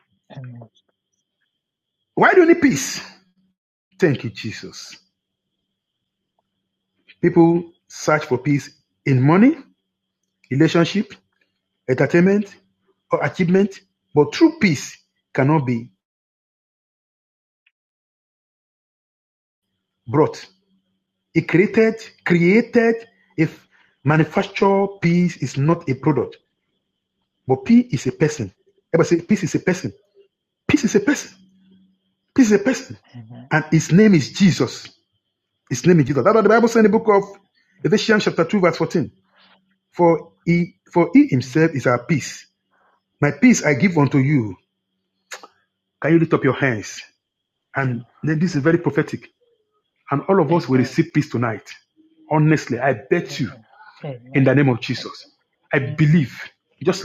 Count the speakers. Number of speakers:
2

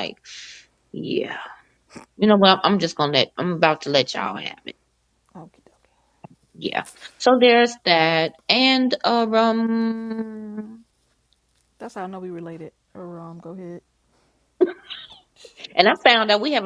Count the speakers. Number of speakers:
2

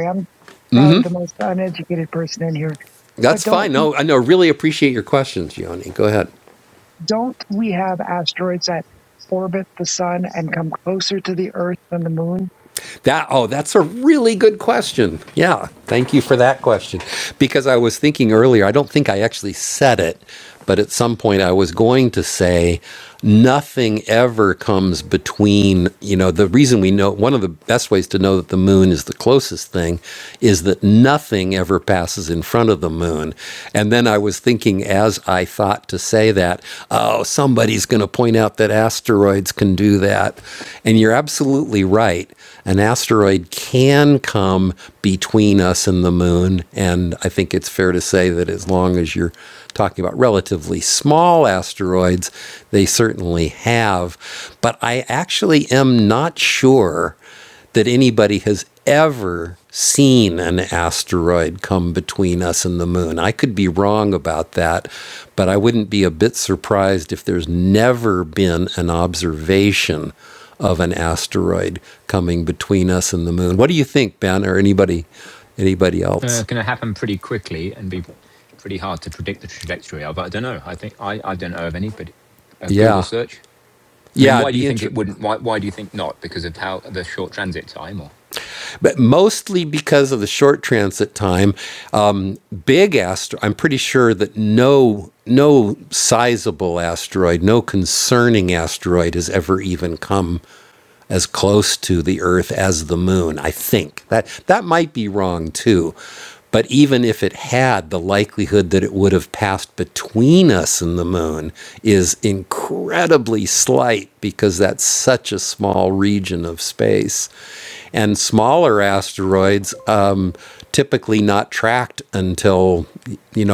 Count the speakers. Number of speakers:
3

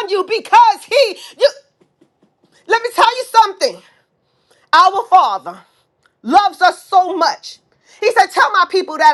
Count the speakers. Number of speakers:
1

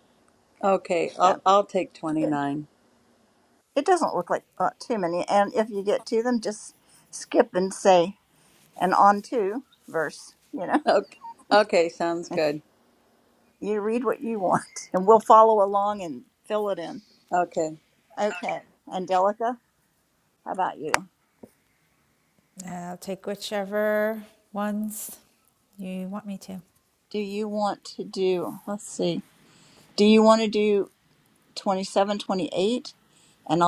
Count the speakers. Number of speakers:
3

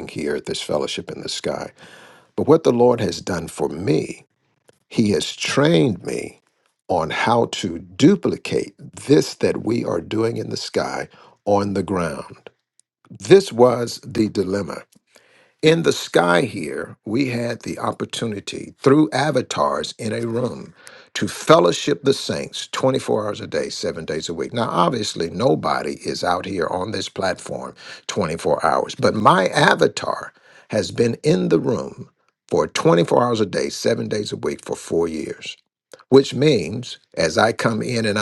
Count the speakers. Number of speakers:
1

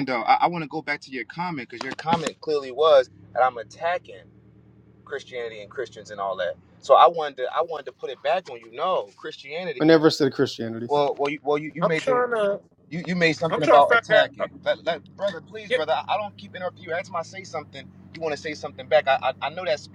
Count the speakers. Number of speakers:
3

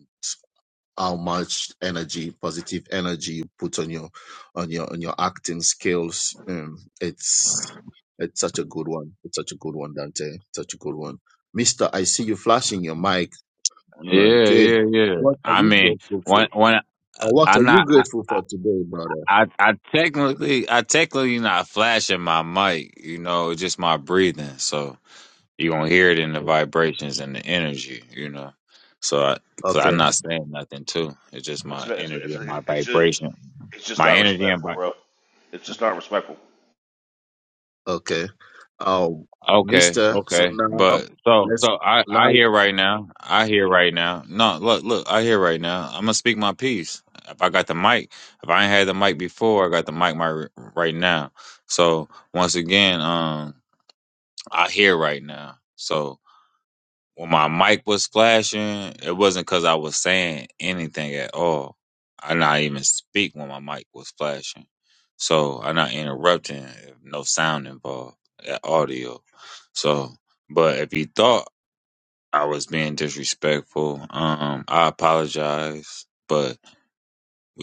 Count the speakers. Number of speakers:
3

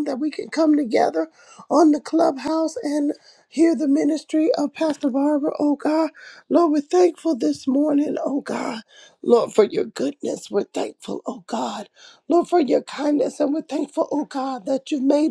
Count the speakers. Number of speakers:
1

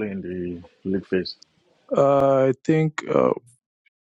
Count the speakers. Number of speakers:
2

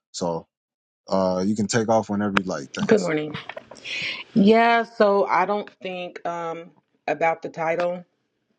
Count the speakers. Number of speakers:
2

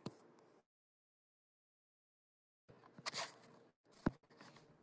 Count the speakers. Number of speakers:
0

